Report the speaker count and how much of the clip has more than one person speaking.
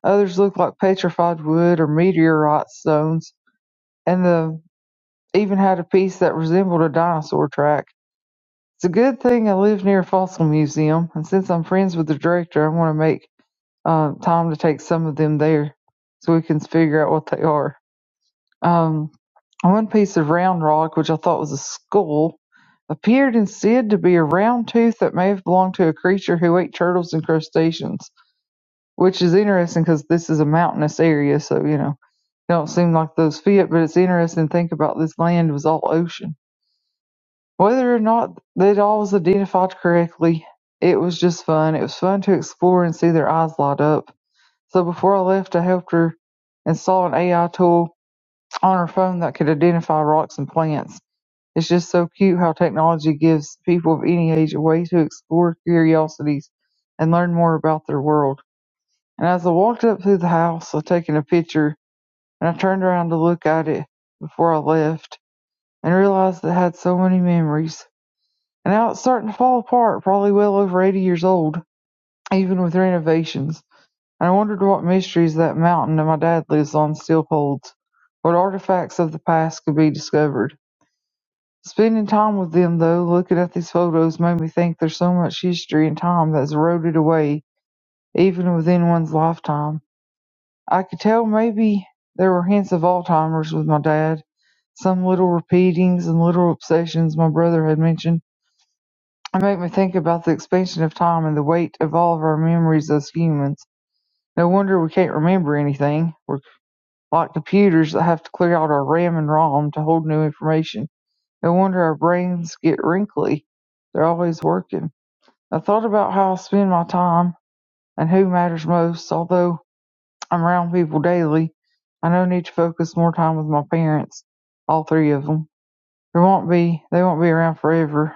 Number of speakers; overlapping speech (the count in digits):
1, no overlap